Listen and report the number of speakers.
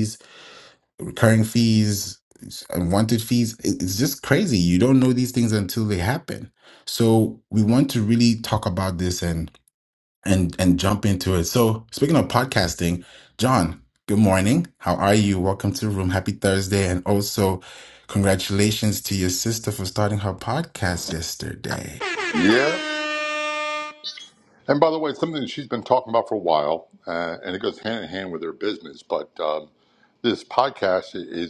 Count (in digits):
2